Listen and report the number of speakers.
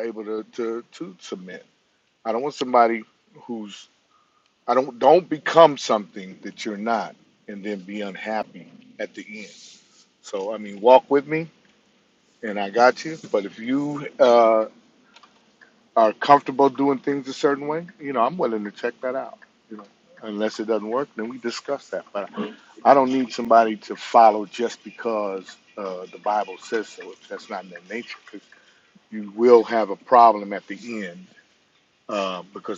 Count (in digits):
1